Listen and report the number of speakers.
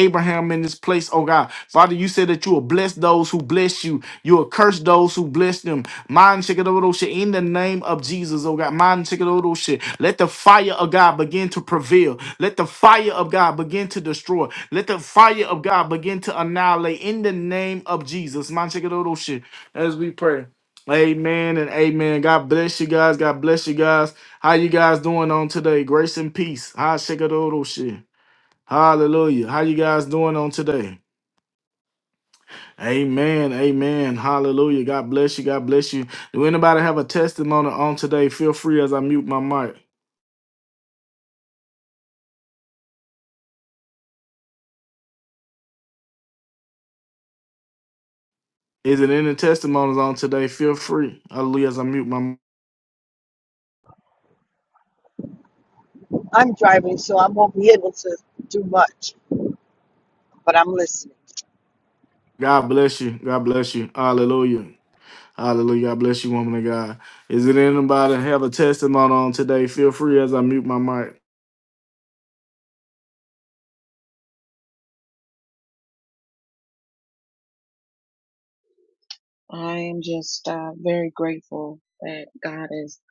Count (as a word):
three